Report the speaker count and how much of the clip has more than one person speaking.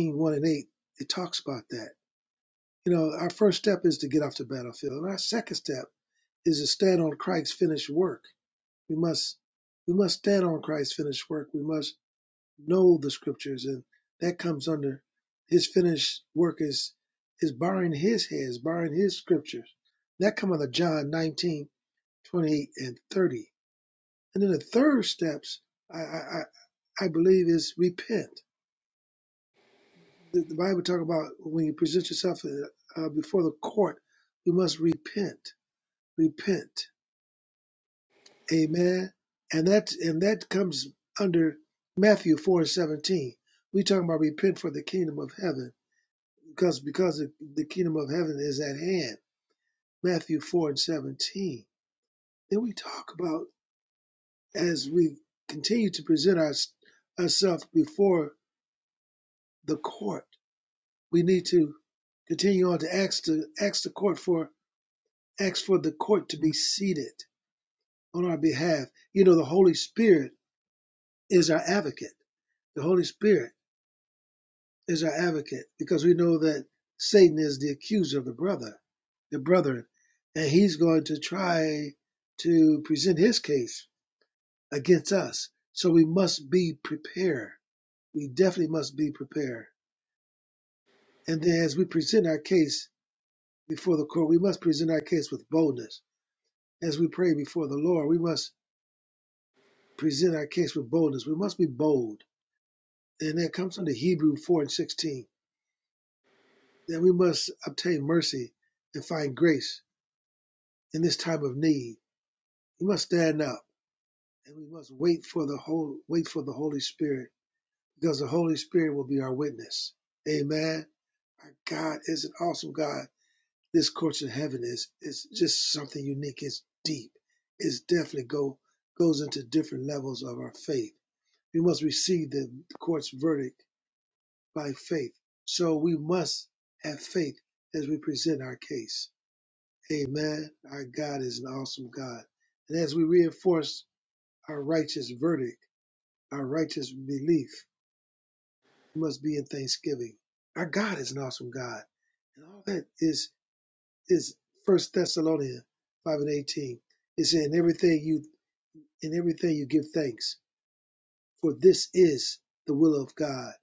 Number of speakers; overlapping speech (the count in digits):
1, no overlap